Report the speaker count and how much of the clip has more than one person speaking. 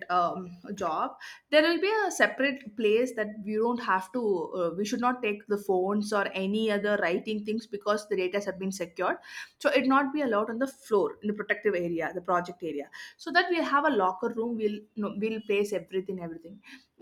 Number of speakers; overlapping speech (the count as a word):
one, no overlap